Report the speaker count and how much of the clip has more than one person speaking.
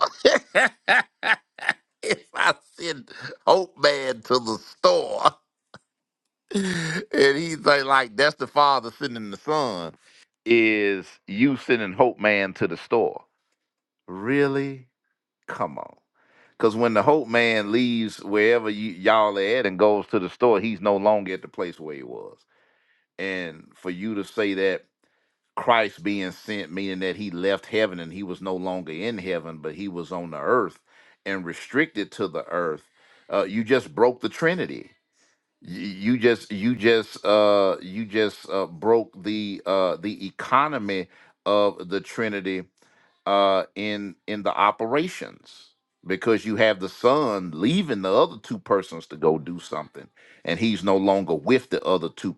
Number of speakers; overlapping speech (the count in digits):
1, no overlap